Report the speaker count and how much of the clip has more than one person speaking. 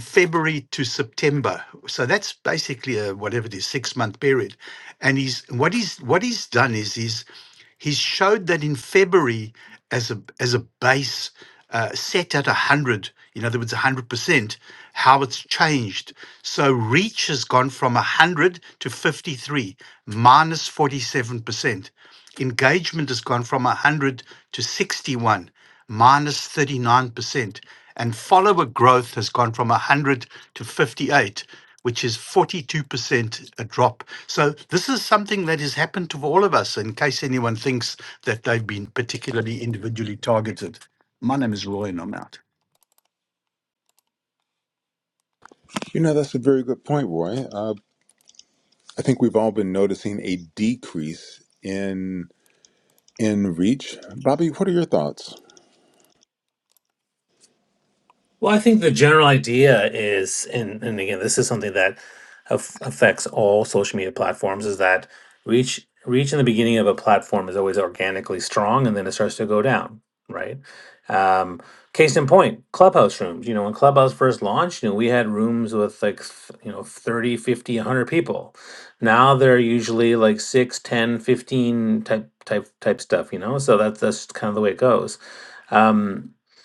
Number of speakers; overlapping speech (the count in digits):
3, no overlap